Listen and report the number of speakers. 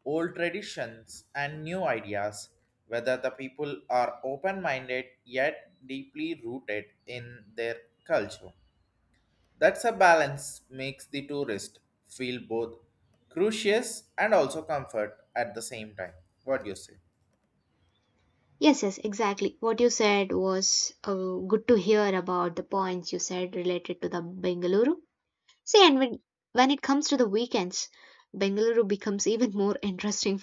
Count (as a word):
two